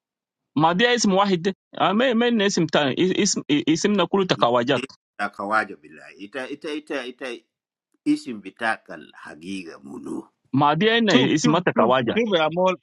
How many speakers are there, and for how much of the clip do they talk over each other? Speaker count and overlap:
3, about 9%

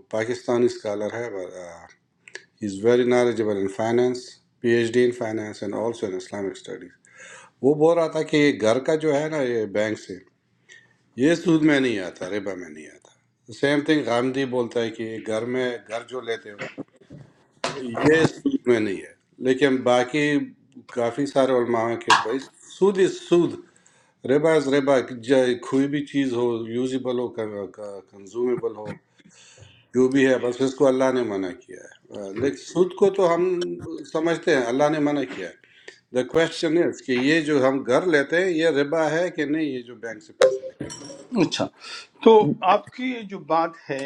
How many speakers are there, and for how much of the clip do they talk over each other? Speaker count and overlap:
2, no overlap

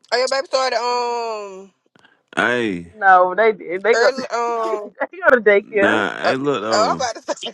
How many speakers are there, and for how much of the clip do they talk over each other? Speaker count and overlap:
3, about 14%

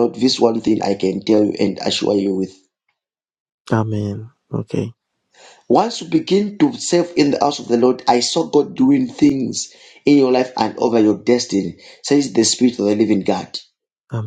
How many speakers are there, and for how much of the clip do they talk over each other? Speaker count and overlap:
2, no overlap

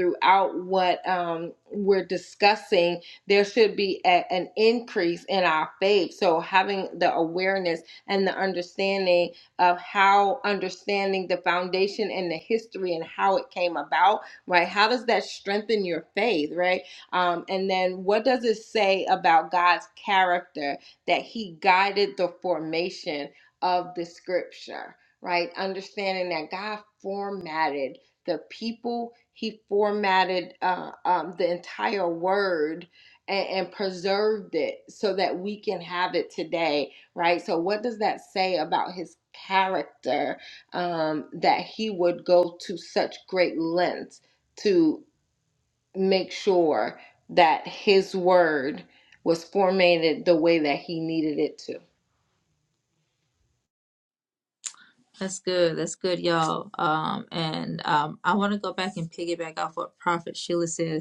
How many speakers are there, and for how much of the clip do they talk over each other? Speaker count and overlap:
2, no overlap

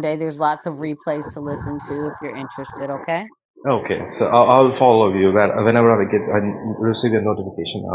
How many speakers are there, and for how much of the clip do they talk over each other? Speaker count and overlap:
2, no overlap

